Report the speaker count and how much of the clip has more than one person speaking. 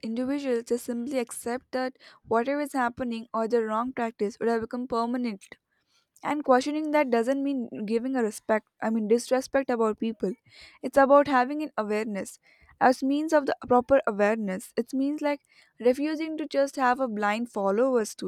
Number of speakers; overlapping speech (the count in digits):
1, no overlap